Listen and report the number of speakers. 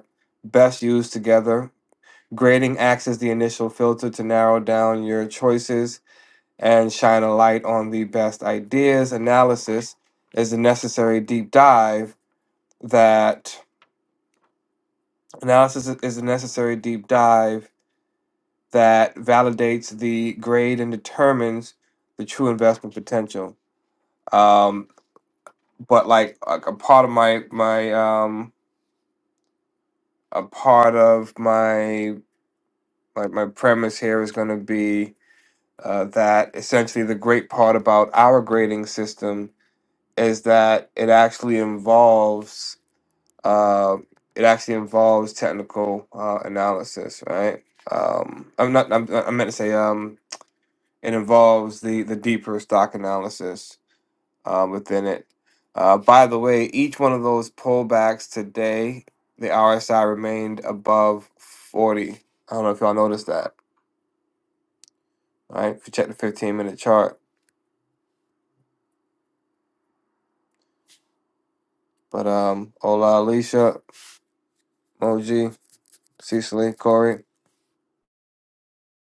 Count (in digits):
1